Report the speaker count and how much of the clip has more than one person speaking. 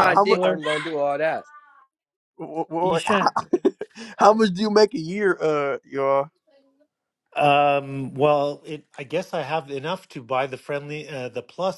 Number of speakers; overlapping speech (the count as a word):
three, about 10%